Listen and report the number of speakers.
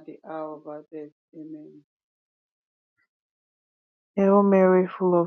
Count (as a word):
two